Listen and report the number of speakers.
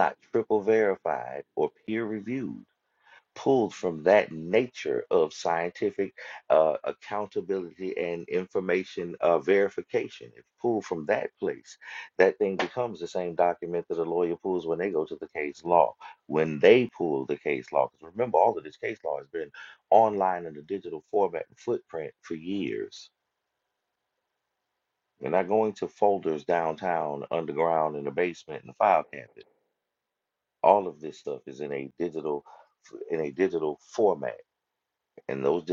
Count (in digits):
1